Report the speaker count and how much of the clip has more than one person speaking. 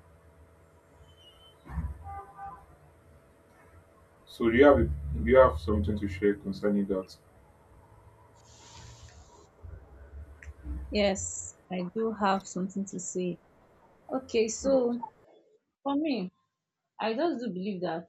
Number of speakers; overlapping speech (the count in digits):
2, about 1%